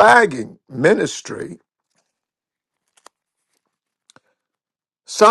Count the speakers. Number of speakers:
one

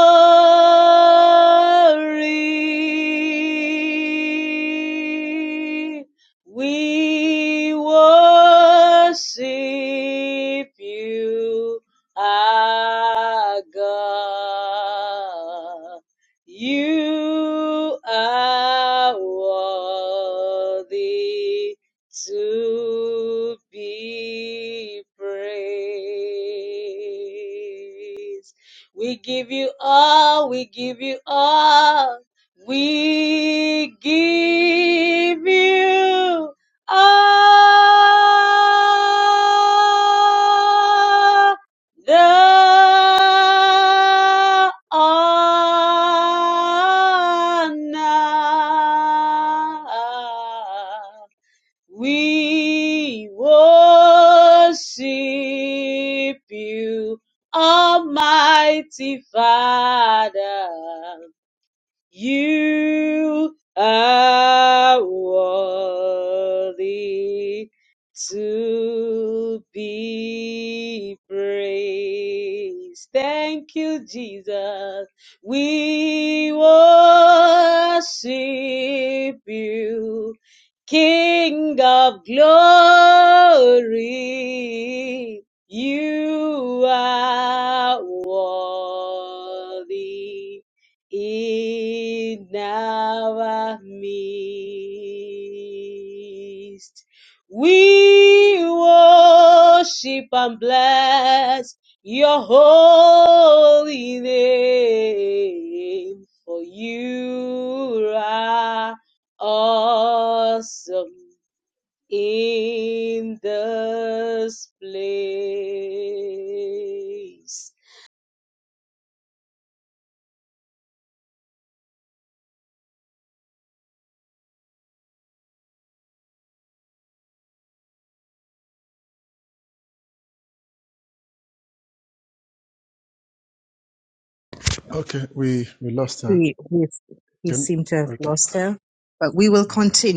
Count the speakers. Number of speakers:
three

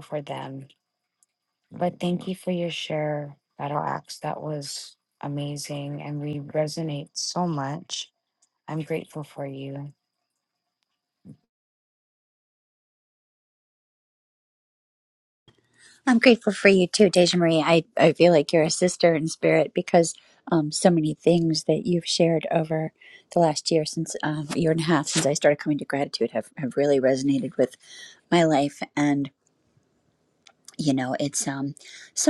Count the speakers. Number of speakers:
two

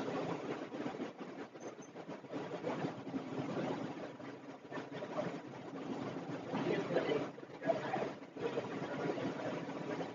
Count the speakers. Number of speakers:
zero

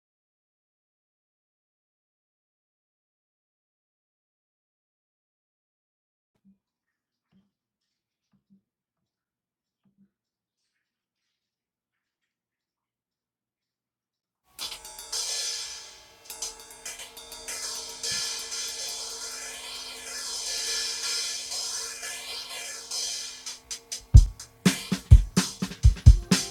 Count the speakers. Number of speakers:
zero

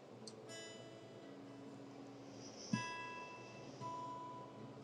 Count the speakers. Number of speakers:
zero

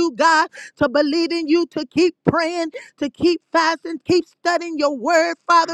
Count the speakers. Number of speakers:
one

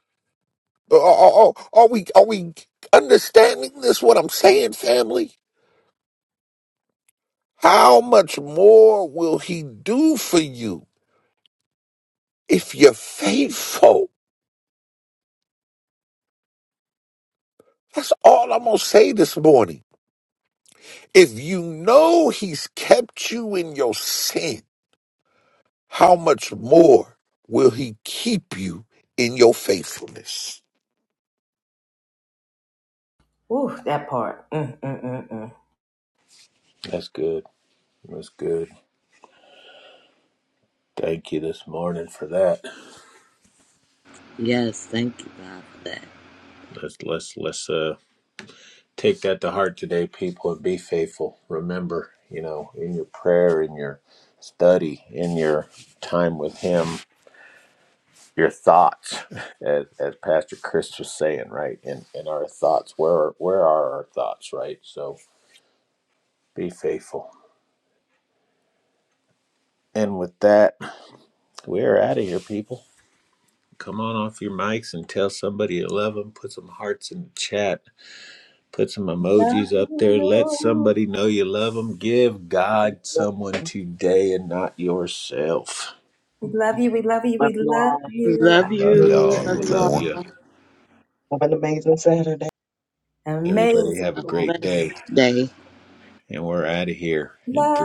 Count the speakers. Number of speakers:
five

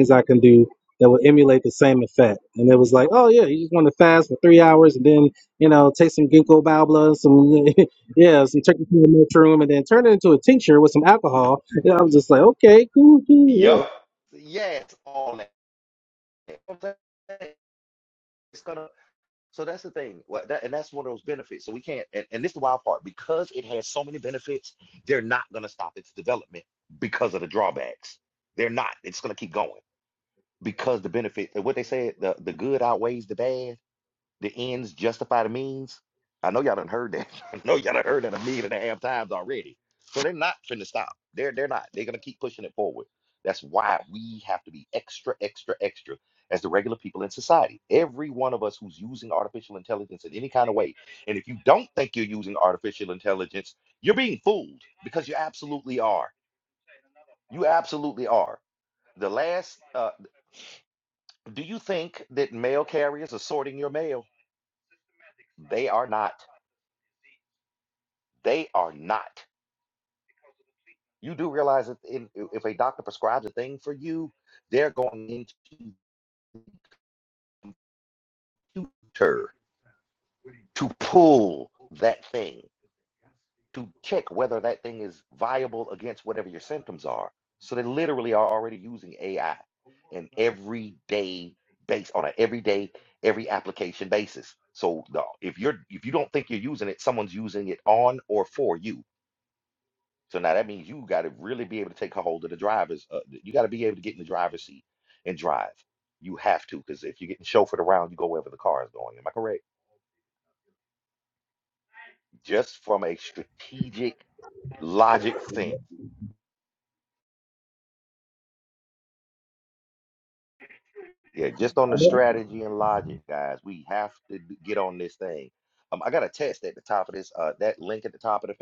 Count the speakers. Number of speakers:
two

